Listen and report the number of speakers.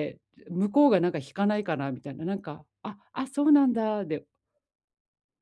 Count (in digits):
1